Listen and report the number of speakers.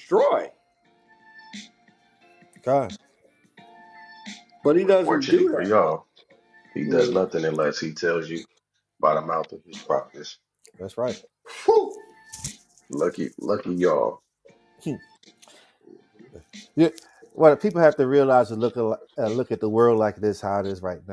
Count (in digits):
3